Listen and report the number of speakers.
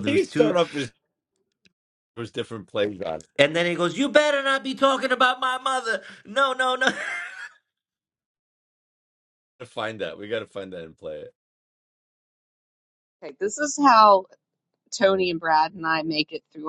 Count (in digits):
3